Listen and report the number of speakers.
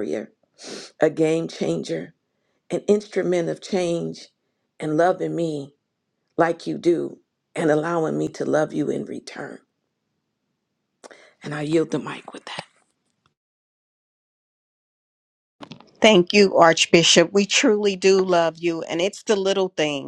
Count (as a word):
two